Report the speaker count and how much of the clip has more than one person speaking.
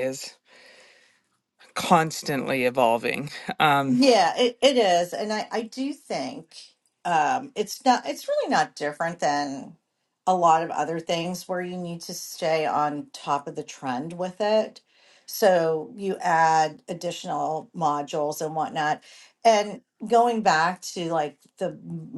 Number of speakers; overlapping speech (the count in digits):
2, under 1%